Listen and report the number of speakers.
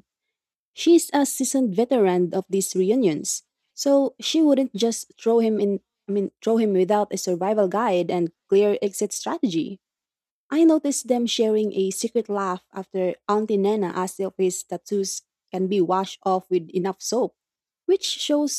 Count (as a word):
one